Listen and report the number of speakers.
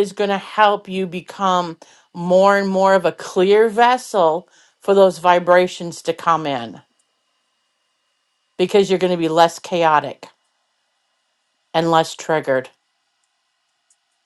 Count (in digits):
1